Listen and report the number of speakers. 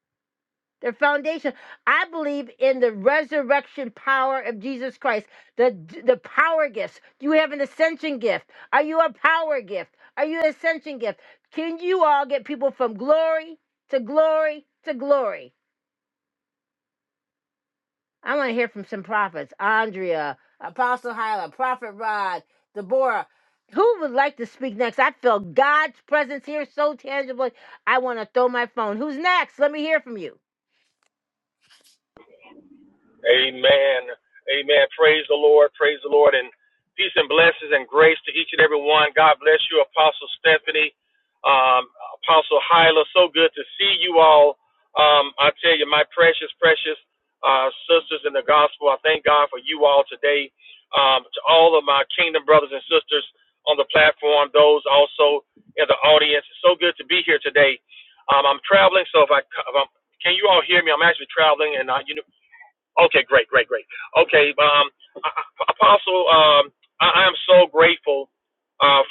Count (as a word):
two